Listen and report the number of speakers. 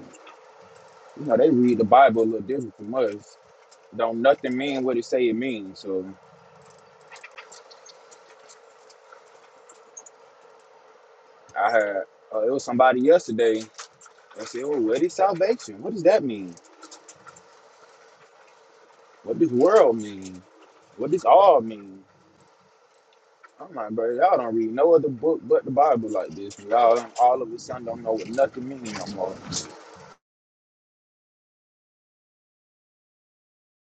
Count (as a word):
one